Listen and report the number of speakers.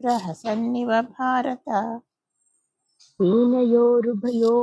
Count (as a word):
two